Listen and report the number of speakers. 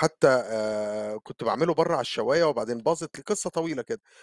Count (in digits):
1